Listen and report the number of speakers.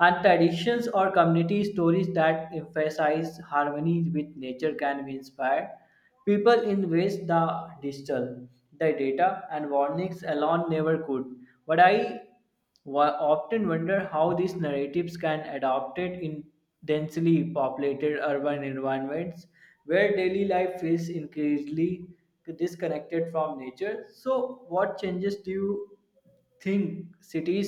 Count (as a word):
one